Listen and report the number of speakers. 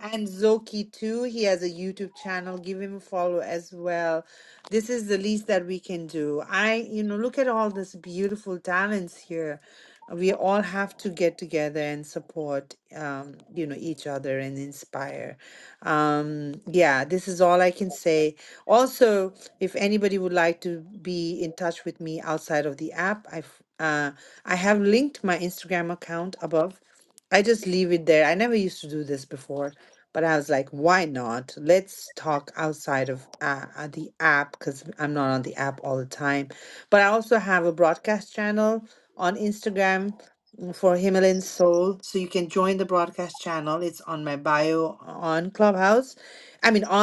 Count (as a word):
one